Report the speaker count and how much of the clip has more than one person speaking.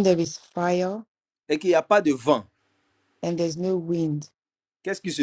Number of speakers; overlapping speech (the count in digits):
2, no overlap